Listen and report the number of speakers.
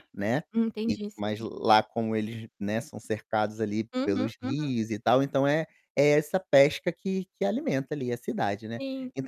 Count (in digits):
2